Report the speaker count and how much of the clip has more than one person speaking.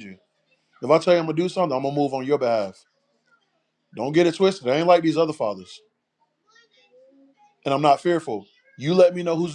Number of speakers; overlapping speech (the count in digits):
1, no overlap